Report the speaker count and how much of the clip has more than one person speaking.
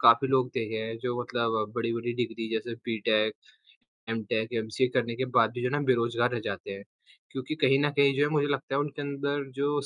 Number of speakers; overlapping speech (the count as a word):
one, no overlap